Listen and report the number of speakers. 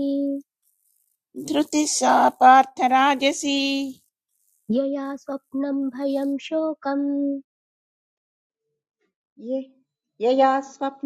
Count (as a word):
three